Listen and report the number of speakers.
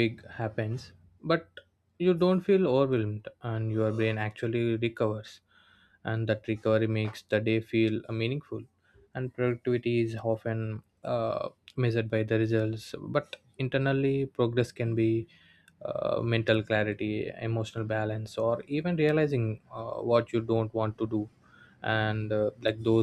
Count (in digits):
1